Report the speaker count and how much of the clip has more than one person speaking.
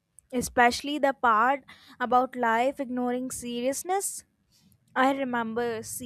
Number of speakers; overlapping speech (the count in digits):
1, no overlap